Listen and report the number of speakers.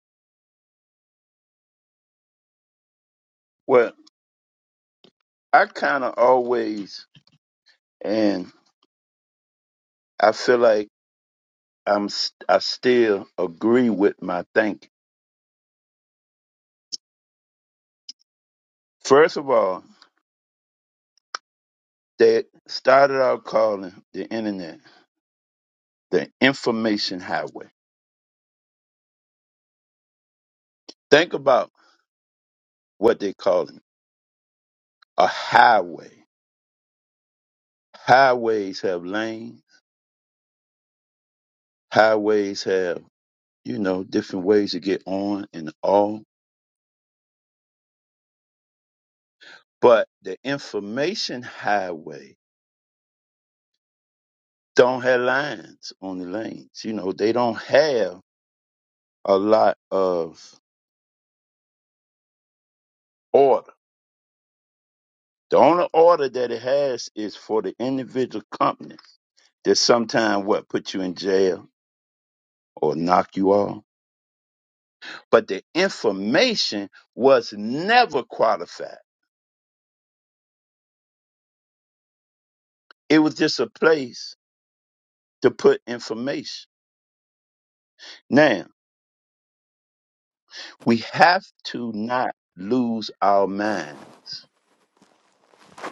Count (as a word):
one